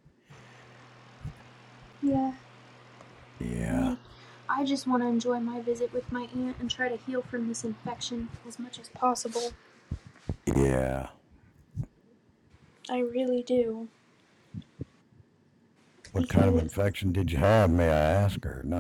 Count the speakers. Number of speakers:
2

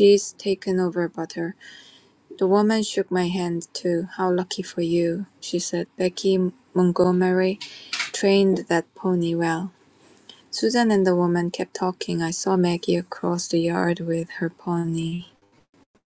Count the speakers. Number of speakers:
1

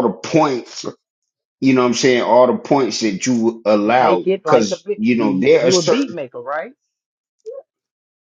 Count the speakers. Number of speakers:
2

